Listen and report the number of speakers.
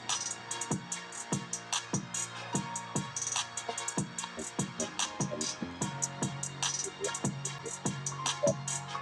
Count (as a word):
zero